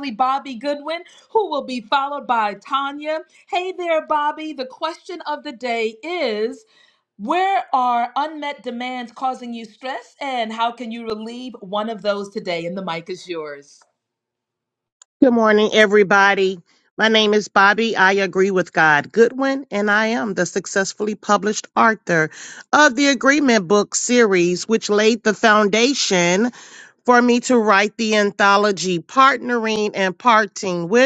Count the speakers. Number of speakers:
2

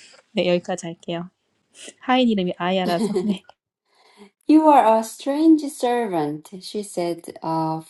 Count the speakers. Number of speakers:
2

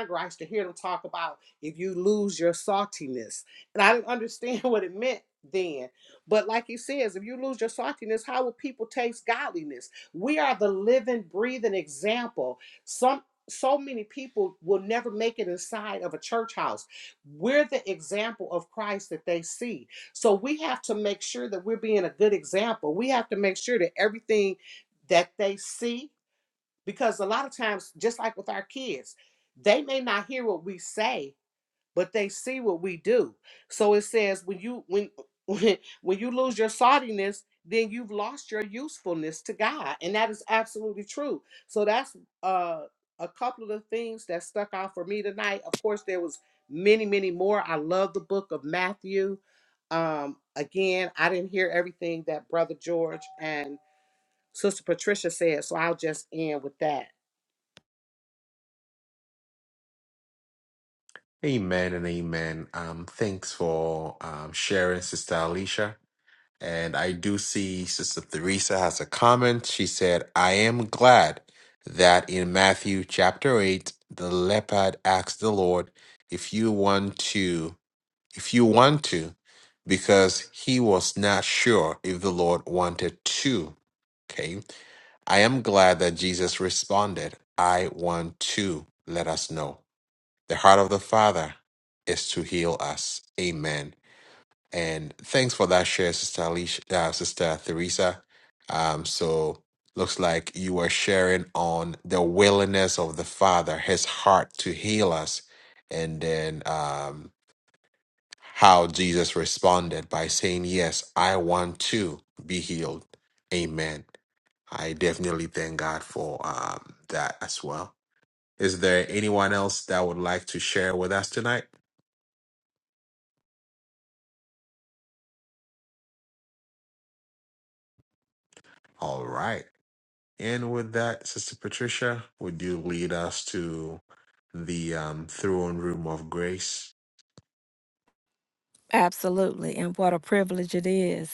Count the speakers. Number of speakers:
3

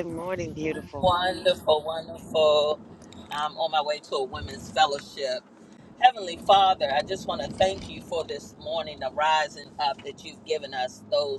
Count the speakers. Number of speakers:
2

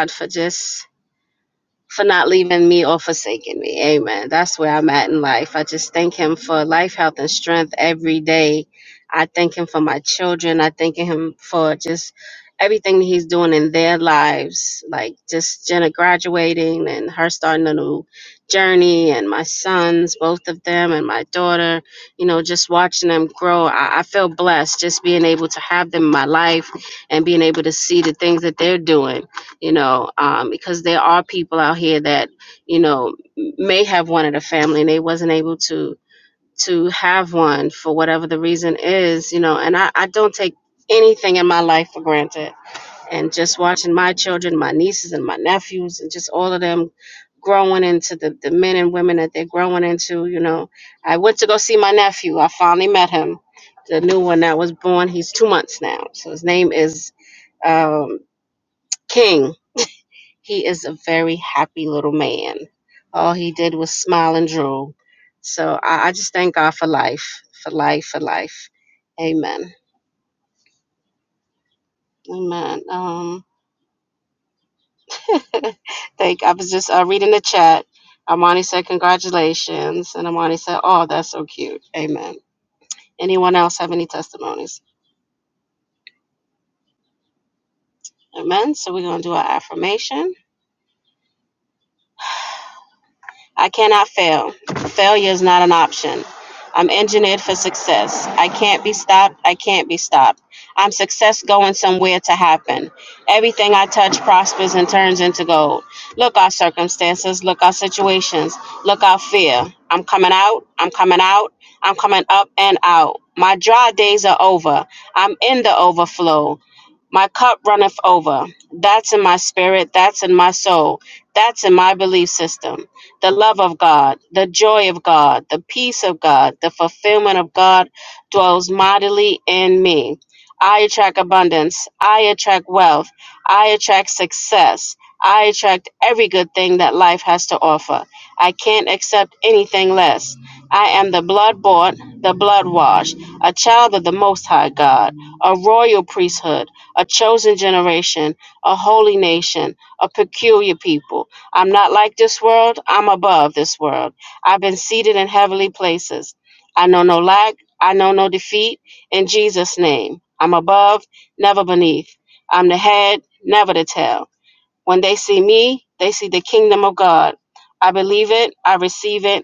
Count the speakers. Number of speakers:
1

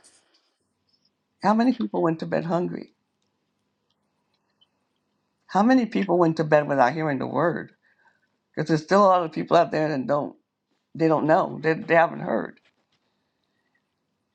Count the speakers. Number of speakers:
1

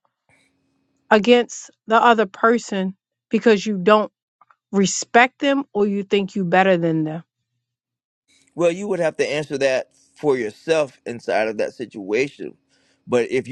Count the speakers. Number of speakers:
2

